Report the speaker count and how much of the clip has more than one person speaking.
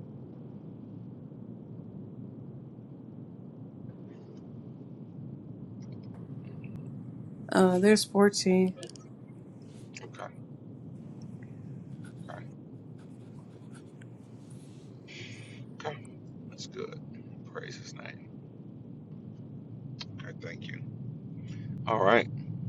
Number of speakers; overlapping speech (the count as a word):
two, no overlap